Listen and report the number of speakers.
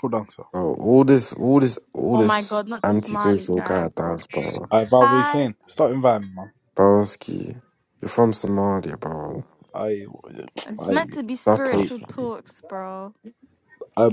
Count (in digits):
3